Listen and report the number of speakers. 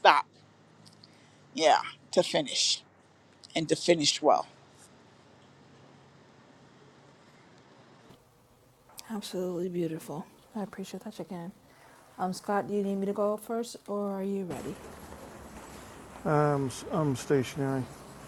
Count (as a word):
three